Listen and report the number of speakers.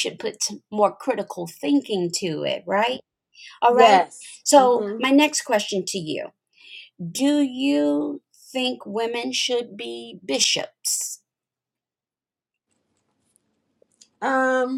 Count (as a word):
two